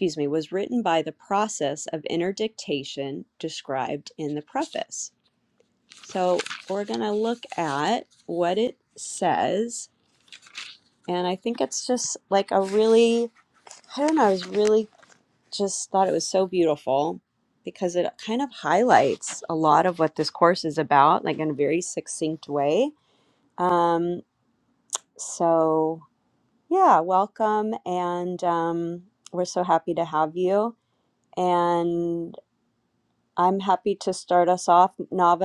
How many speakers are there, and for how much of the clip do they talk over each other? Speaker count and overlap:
one, no overlap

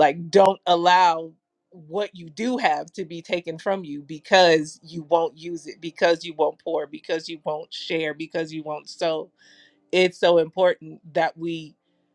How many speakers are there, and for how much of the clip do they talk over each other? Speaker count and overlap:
one, no overlap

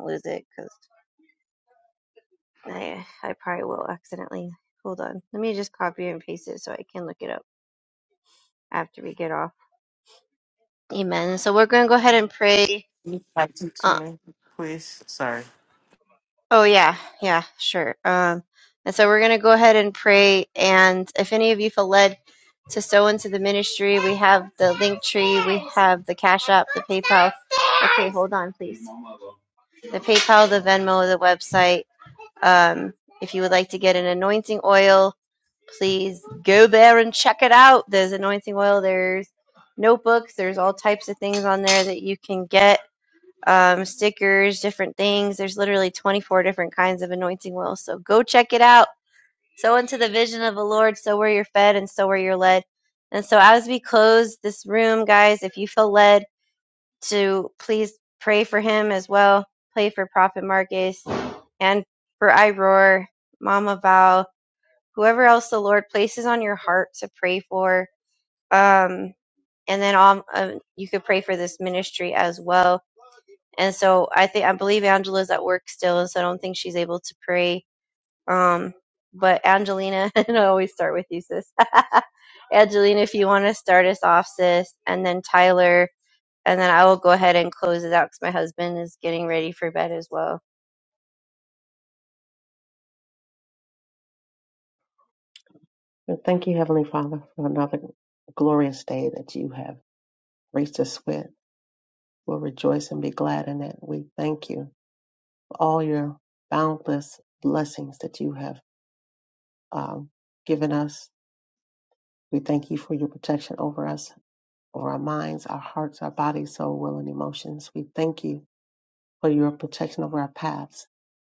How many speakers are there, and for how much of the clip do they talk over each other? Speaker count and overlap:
three, under 1%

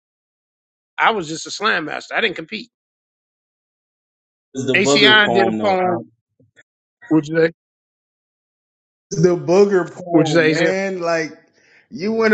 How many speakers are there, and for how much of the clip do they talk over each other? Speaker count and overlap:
two, about 13%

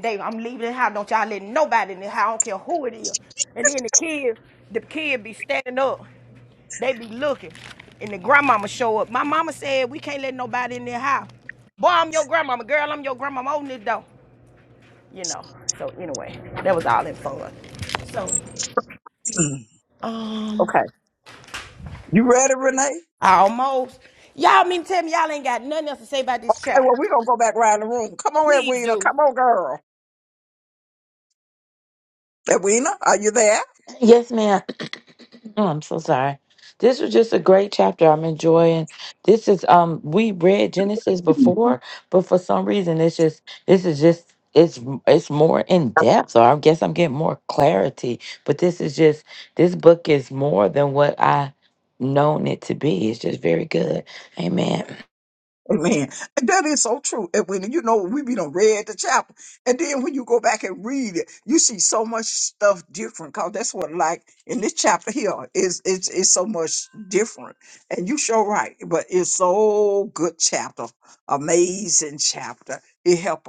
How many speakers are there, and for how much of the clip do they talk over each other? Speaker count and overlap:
three, about 2%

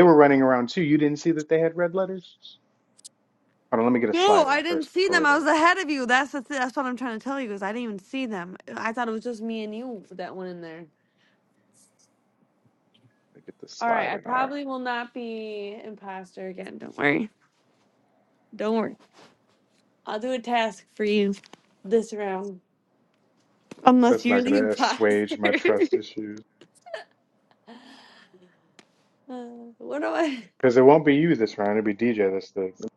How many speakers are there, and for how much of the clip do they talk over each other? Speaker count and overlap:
two, about 10%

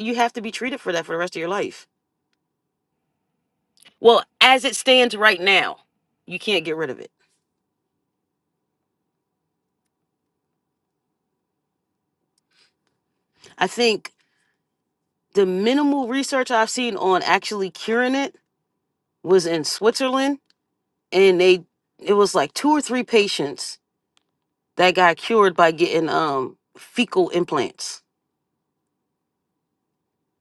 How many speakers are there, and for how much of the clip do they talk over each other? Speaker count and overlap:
one, no overlap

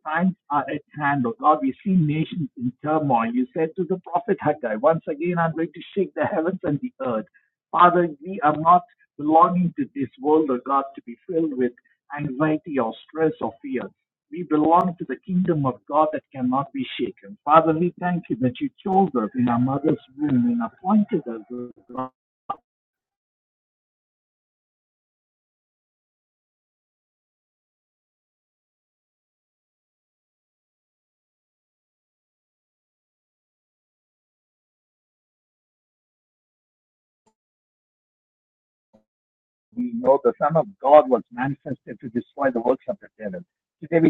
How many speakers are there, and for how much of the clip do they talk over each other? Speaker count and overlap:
one, no overlap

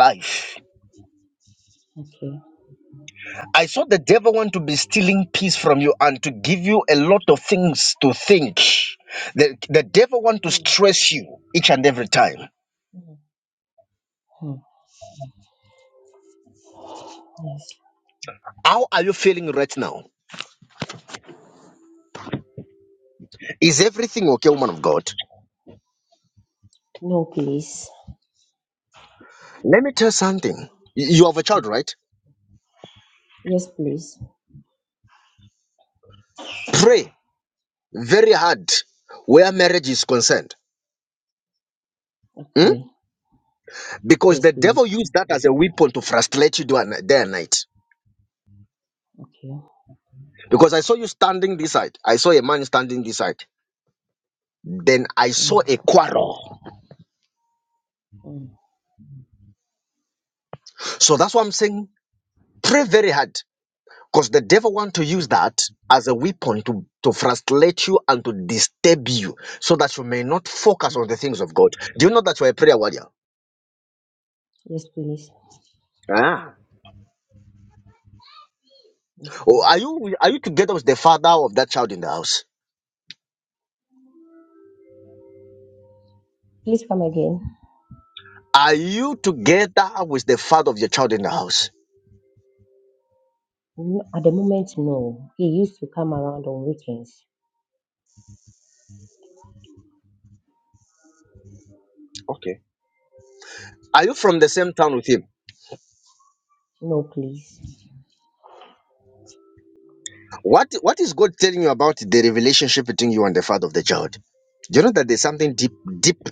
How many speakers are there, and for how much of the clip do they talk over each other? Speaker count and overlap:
two, about 1%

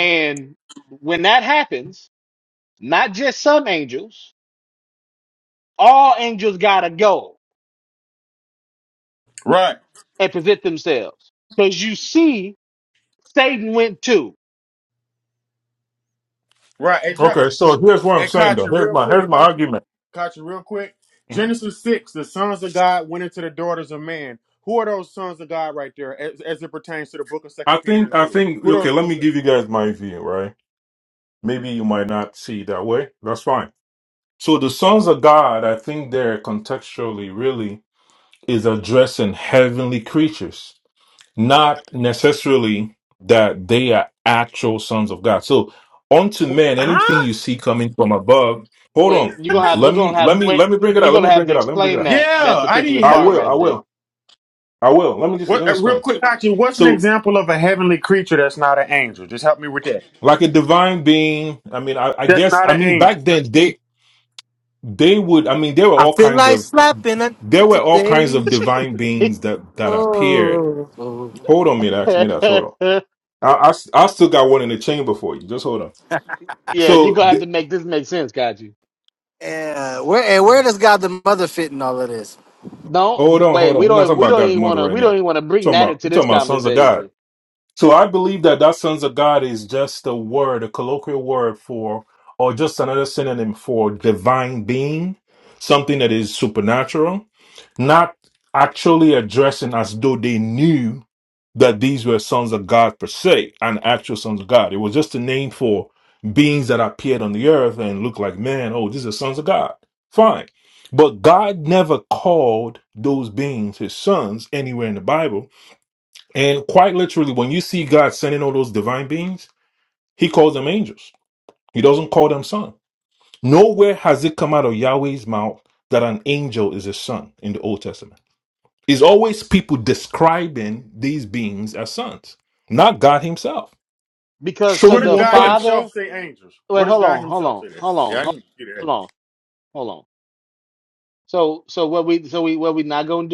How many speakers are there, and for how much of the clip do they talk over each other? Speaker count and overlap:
four, about 13%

